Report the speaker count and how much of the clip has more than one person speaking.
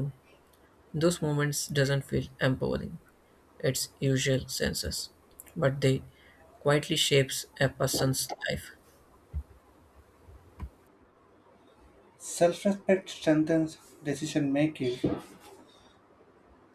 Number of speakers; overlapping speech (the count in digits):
2, no overlap